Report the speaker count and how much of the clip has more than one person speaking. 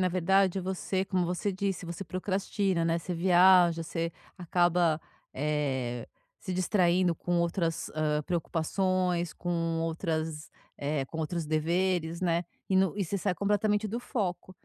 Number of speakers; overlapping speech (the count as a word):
one, no overlap